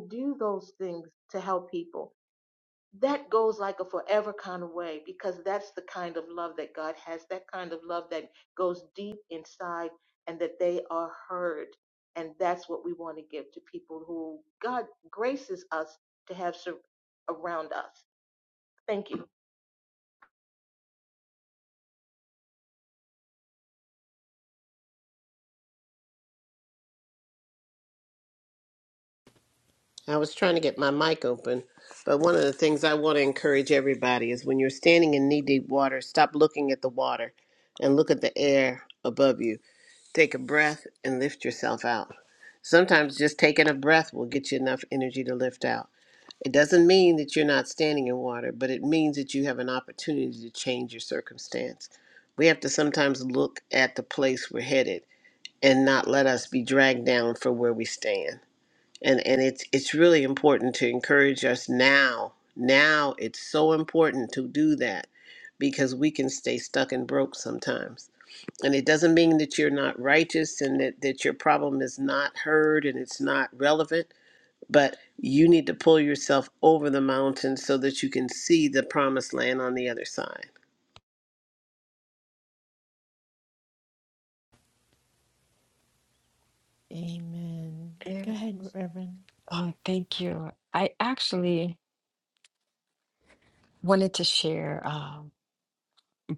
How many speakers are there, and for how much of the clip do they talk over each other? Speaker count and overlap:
four, under 1%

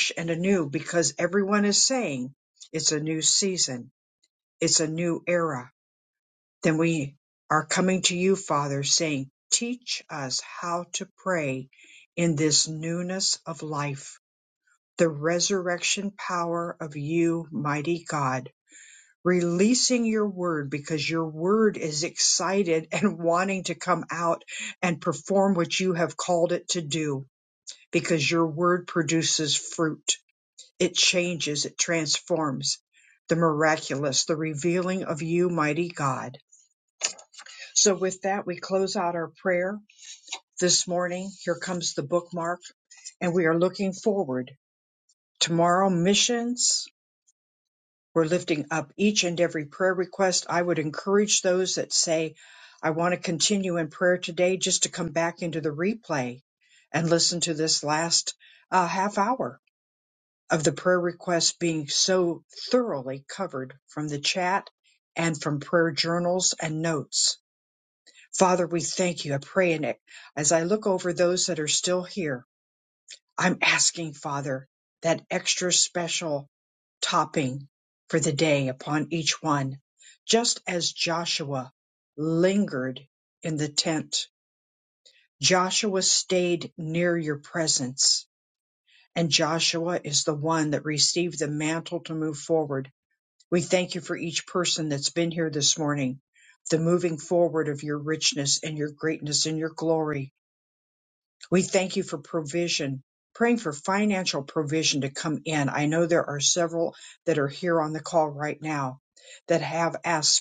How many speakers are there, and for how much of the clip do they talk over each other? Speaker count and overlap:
one, no overlap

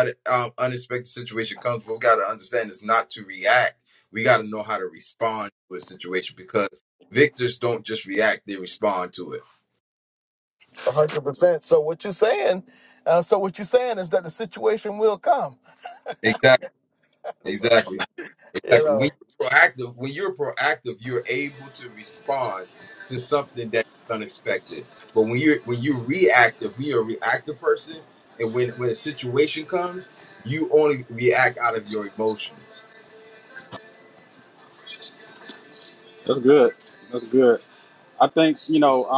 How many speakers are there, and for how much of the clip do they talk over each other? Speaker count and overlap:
three, about 1%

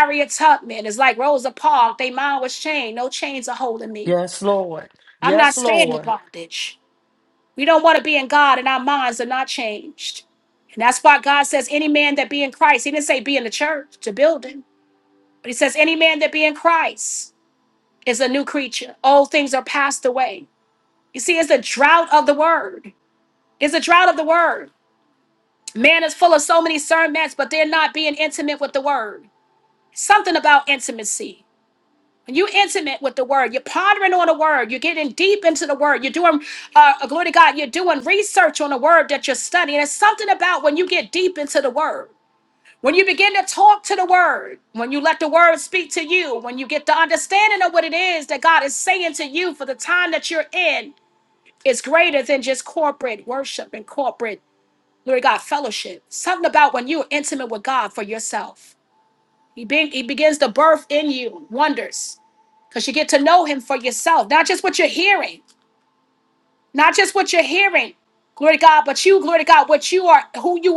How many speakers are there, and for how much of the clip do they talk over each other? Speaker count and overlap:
two, about 1%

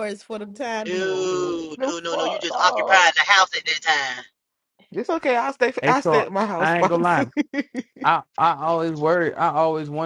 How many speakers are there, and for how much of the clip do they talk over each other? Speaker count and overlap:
four, about 30%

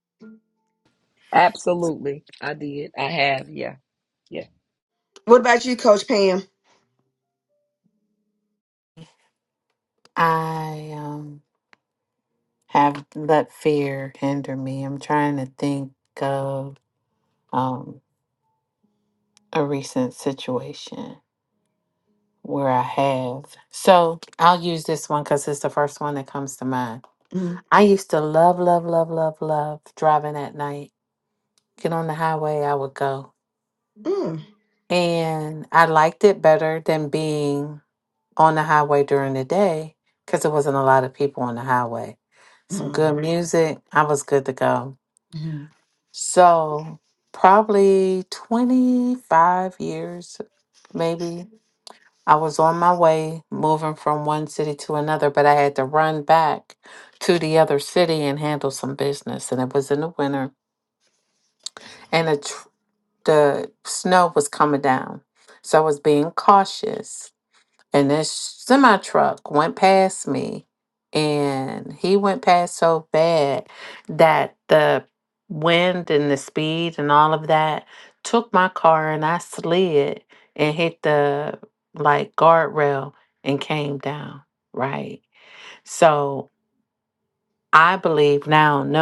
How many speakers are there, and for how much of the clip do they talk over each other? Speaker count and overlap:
three, under 1%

